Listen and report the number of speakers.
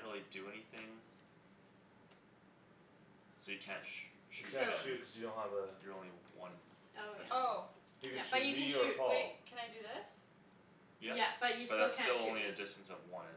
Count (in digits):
4